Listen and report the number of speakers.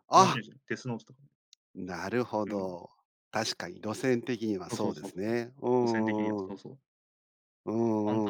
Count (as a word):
two